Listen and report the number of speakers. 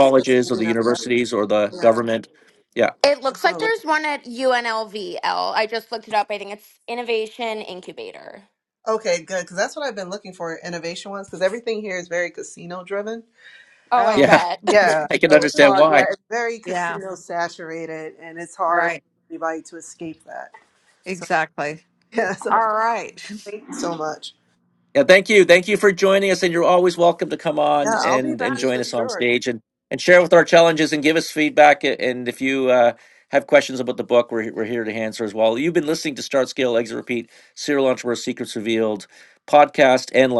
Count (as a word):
four